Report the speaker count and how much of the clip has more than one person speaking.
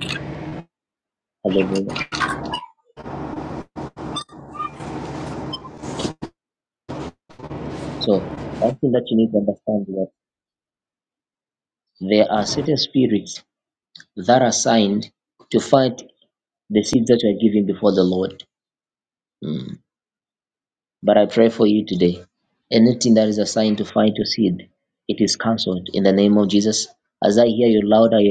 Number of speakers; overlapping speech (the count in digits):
1, no overlap